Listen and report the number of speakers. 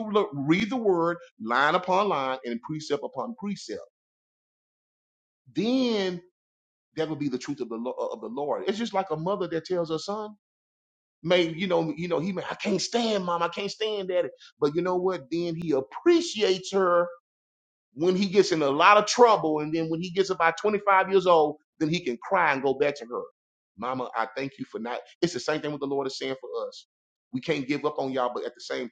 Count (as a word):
one